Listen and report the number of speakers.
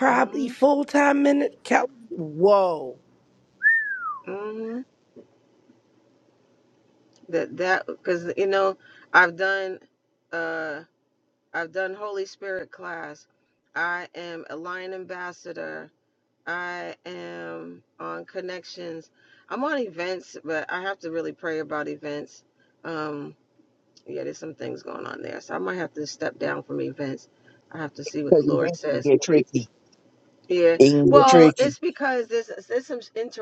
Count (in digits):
3